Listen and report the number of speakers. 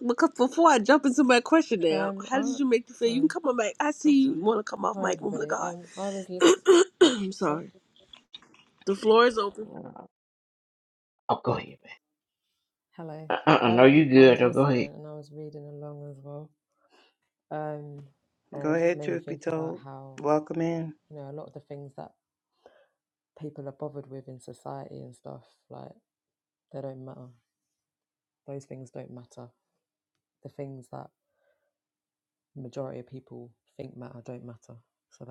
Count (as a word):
four